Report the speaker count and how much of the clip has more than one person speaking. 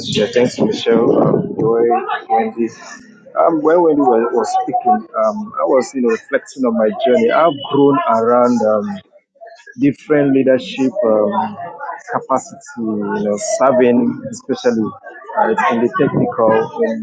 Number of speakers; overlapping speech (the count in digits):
1, no overlap